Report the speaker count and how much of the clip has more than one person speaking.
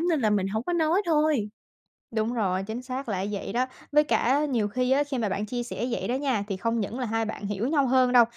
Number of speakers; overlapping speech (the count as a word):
two, no overlap